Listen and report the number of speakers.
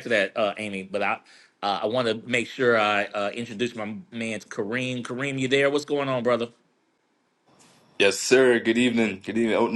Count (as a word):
two